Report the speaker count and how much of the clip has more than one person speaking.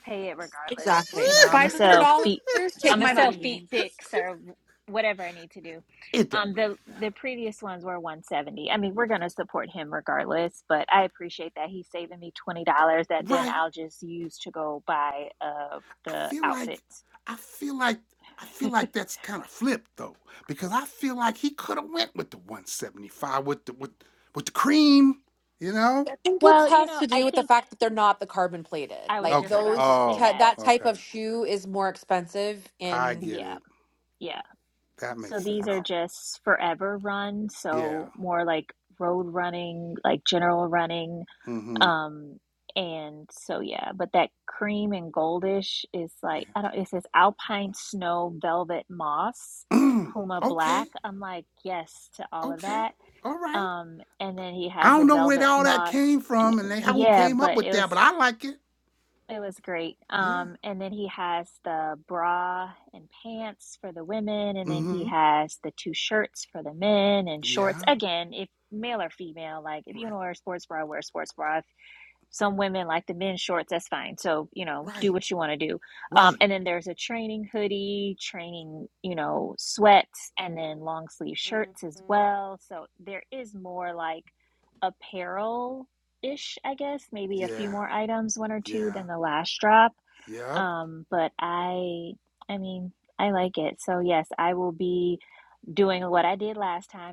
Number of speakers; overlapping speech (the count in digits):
3, about 14%